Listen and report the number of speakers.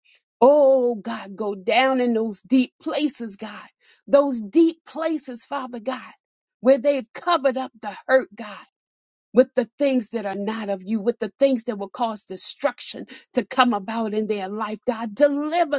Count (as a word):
one